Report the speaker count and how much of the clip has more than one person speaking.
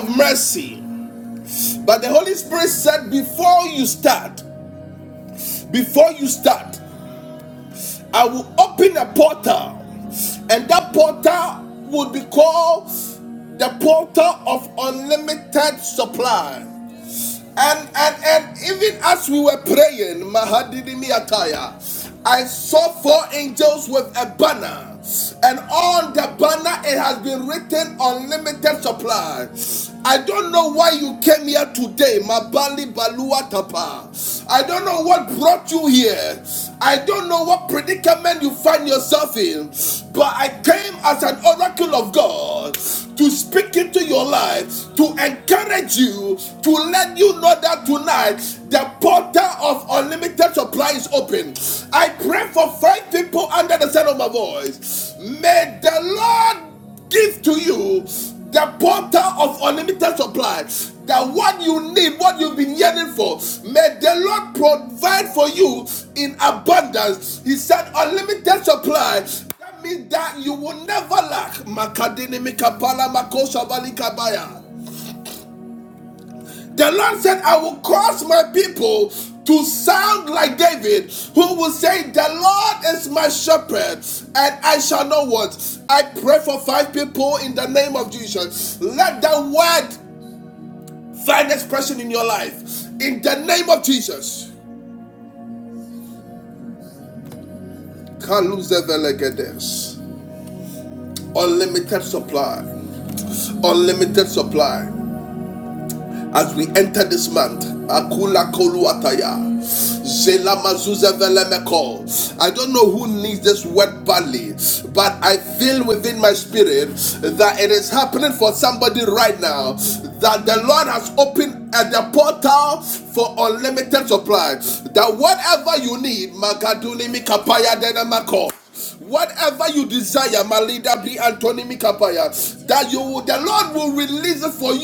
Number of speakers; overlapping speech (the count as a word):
one, no overlap